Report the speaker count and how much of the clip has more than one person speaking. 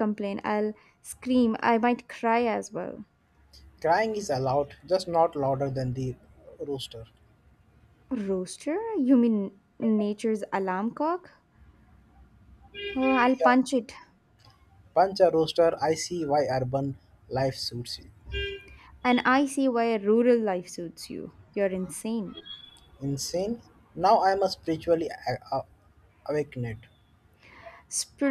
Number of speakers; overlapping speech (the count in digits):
2, about 2%